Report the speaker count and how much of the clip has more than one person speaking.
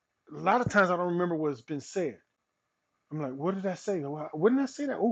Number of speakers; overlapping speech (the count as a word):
one, no overlap